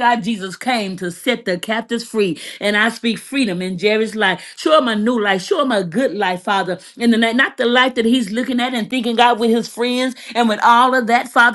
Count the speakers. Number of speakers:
one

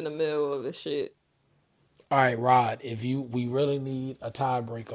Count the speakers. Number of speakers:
two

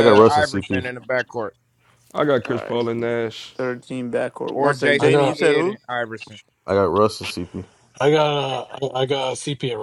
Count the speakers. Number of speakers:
five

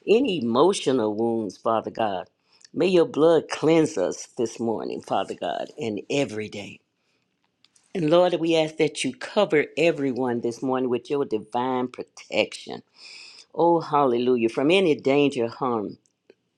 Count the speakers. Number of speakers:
one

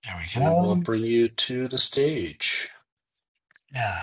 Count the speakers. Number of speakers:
two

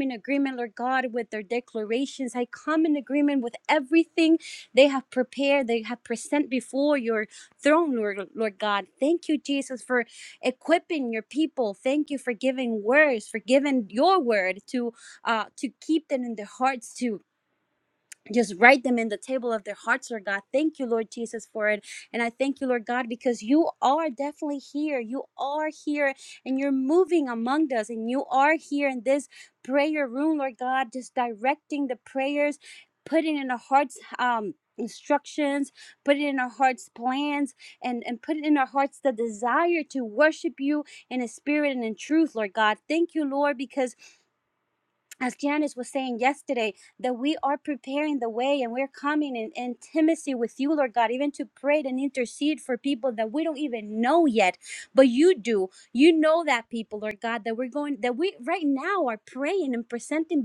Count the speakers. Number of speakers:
one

